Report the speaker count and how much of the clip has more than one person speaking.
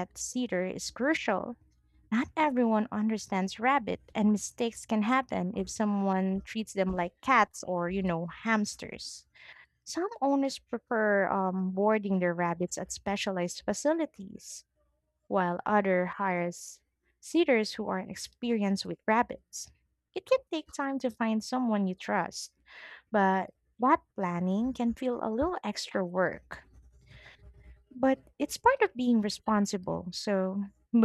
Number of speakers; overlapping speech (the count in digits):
1, no overlap